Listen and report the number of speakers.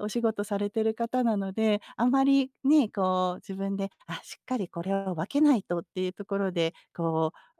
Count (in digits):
1